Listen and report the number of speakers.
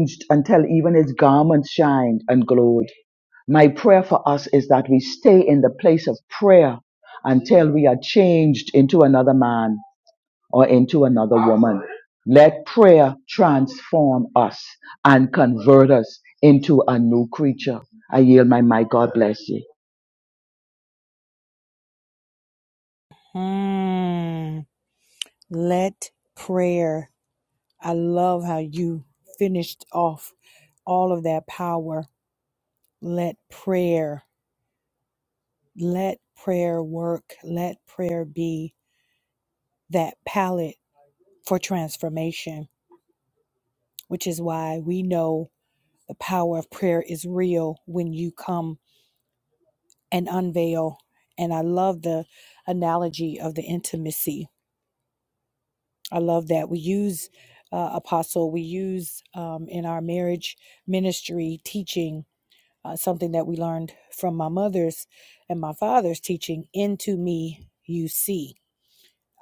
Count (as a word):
two